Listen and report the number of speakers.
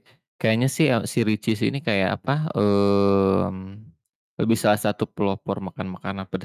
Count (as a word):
one